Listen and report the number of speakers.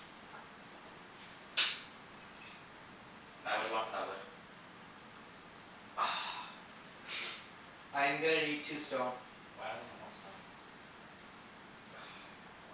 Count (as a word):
two